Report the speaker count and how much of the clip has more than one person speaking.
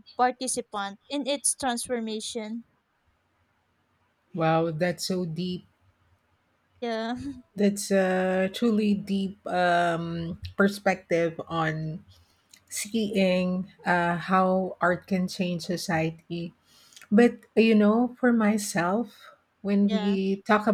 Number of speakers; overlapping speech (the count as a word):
two, under 1%